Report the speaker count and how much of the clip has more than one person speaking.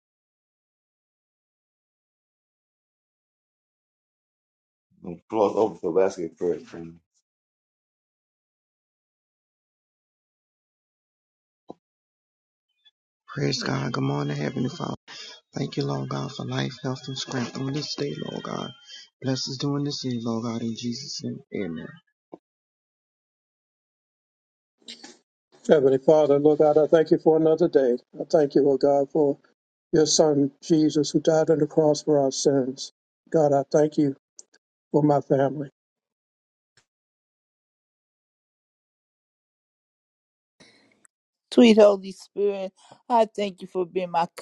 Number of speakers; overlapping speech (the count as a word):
four, no overlap